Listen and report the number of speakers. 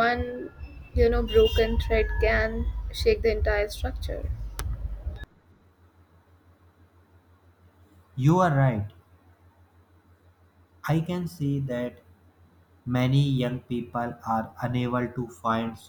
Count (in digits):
2